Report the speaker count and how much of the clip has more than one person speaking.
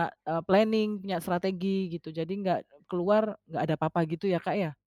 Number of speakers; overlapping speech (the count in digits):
1, no overlap